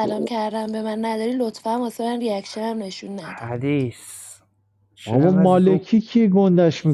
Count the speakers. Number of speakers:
three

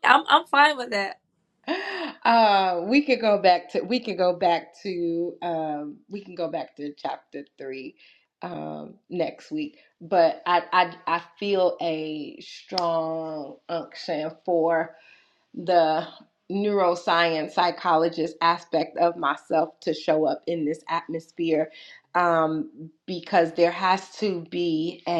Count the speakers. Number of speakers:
two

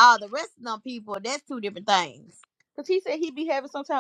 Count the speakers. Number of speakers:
two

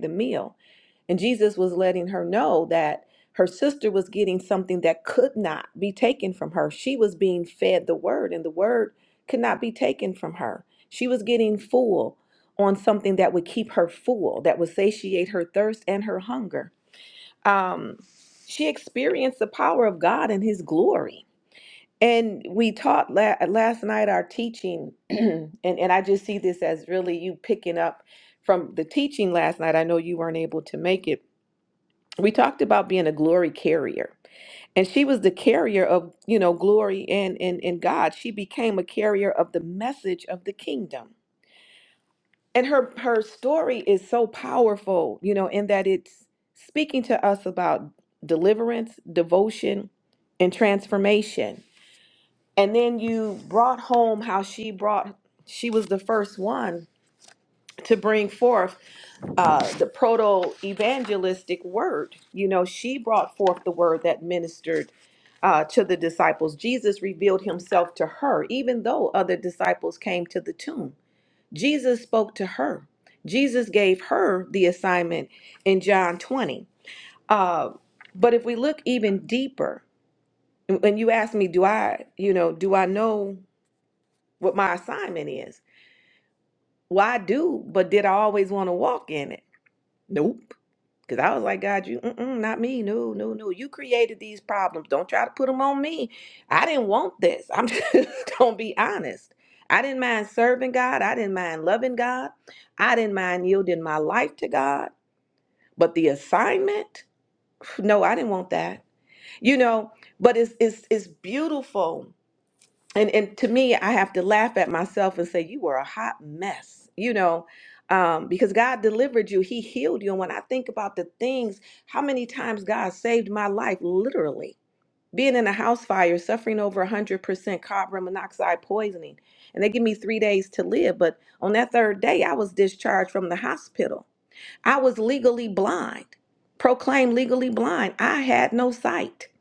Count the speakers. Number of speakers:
one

